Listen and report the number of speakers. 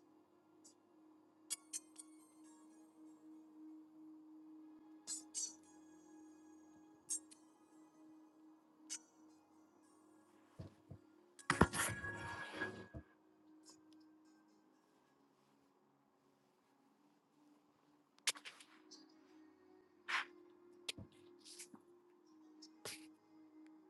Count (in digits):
0